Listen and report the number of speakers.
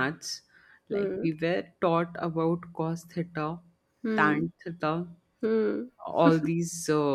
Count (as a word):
two